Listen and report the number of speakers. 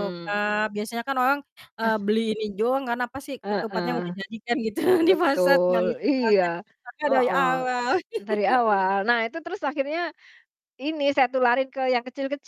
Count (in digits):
2